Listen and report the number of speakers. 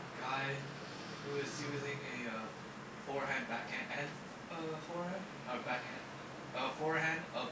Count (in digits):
1